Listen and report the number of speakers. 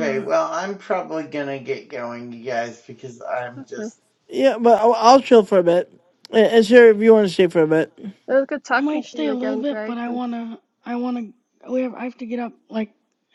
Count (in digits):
4